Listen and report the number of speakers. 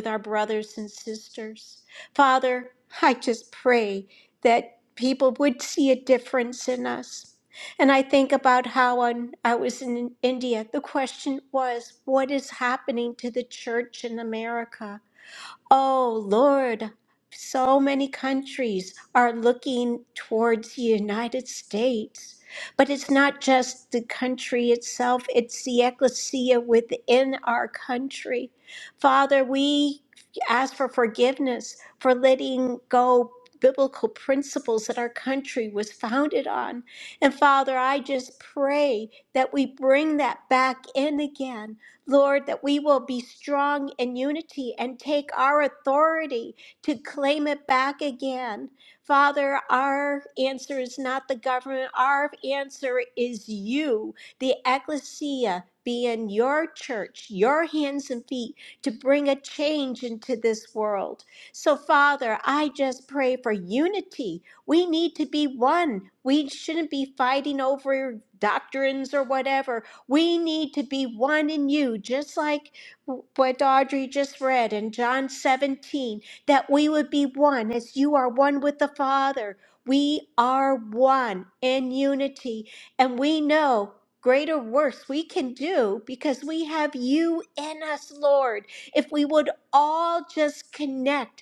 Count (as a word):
one